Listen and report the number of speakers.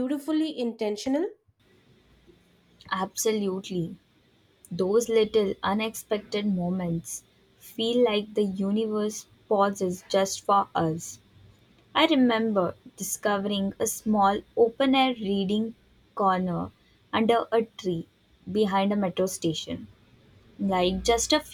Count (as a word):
two